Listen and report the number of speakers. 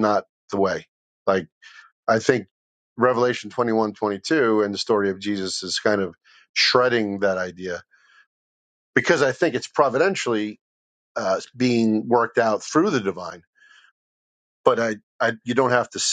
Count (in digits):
1